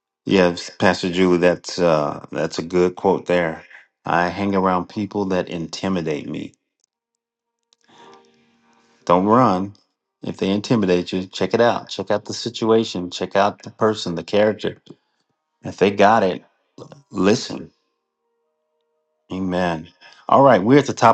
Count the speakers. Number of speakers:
1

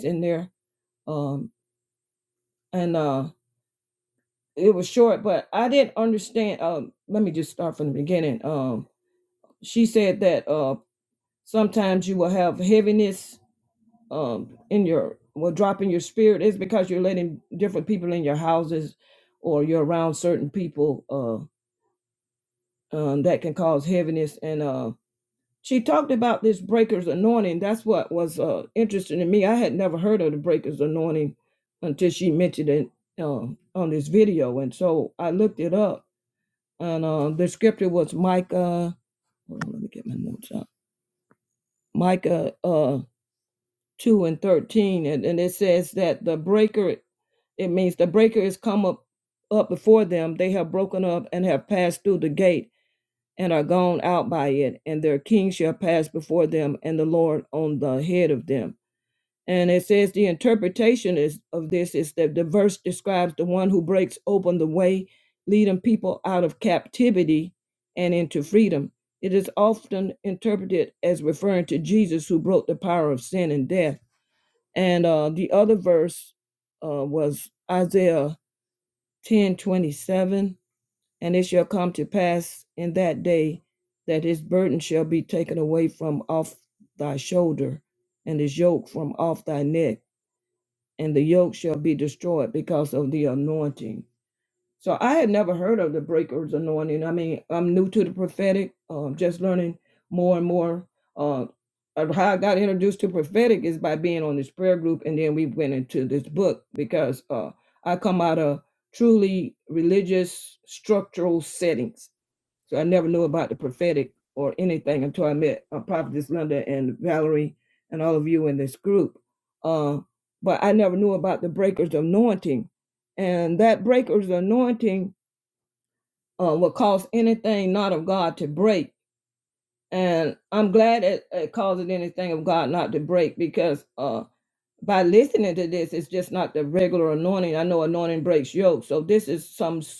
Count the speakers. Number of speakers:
1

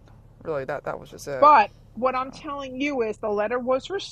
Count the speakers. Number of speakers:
2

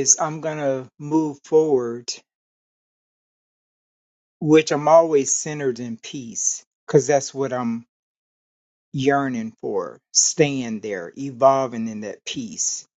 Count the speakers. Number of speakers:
1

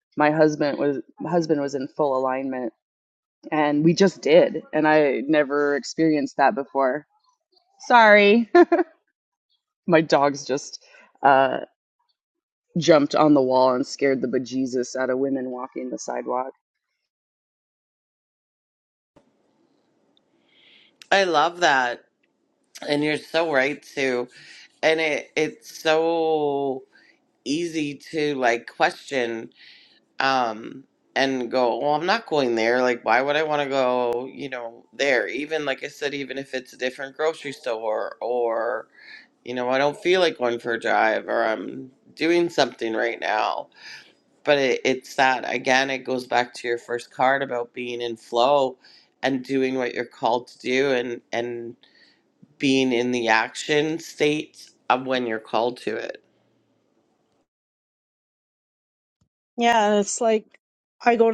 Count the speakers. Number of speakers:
3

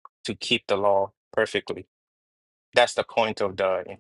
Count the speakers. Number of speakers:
1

